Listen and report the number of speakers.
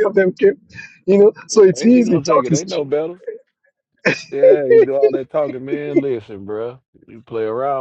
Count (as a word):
two